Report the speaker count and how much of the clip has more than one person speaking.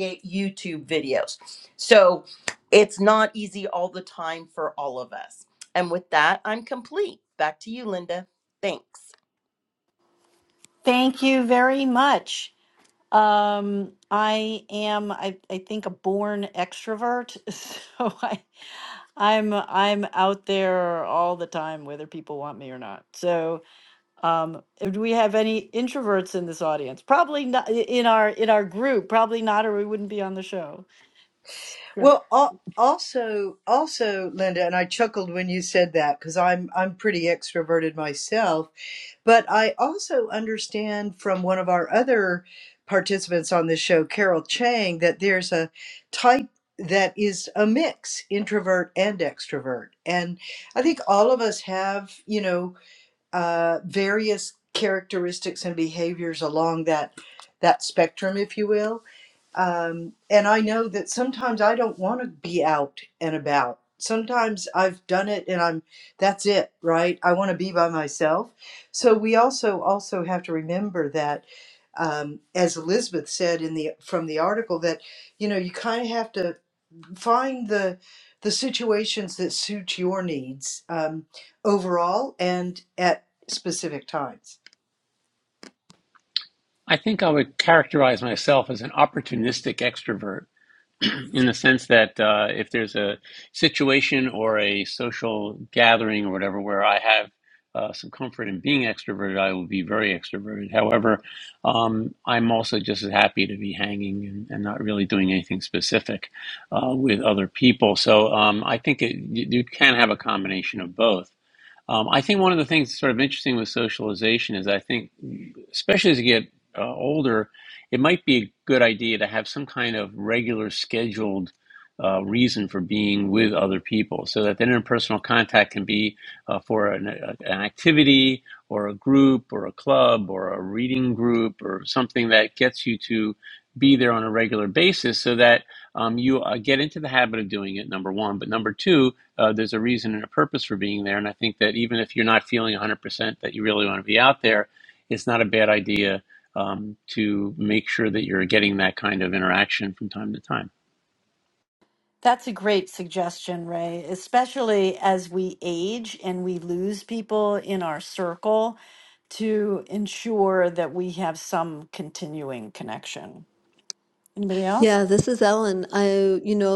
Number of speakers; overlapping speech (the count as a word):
five, under 1%